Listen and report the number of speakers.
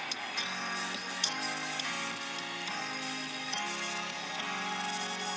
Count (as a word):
zero